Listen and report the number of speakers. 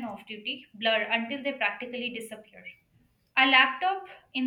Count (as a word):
one